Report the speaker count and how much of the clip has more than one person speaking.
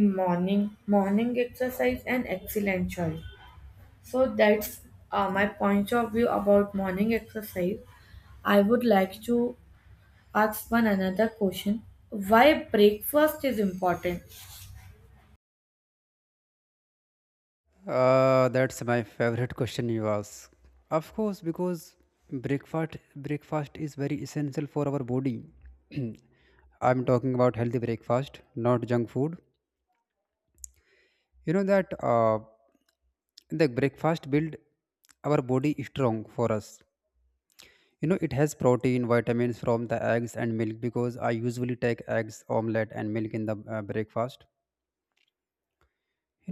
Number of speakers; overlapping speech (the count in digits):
2, no overlap